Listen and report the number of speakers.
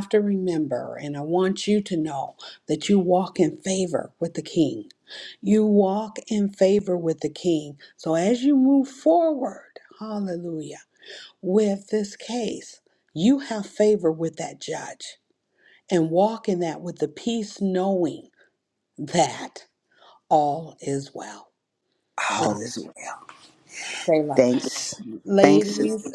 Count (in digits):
2